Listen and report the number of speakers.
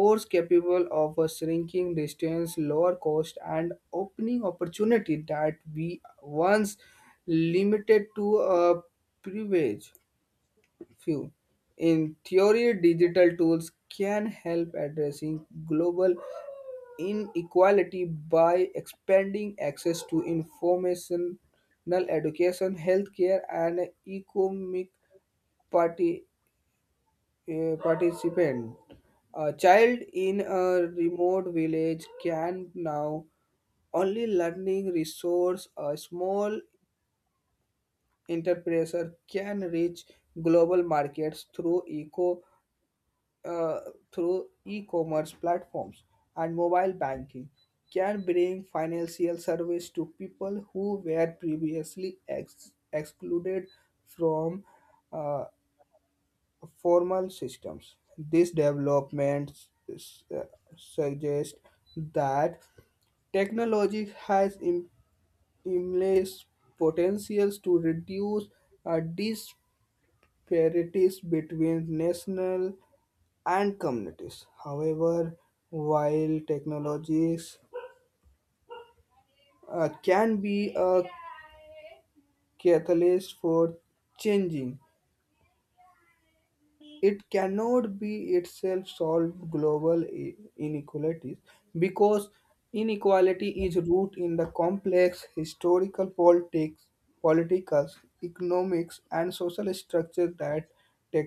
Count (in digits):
1